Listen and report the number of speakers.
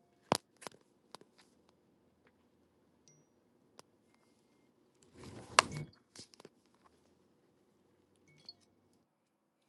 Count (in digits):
0